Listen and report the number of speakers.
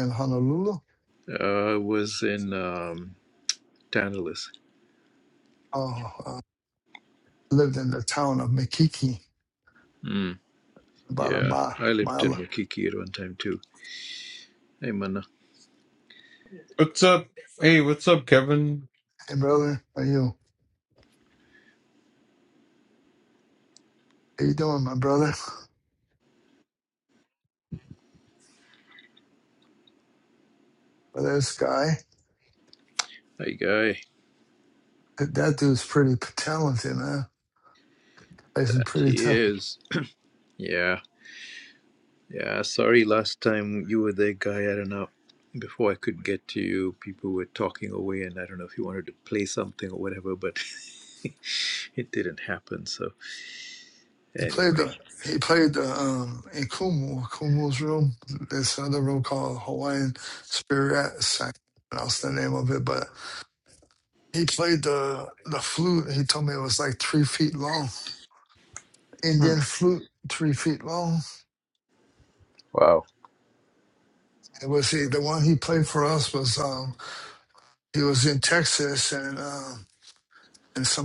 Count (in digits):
3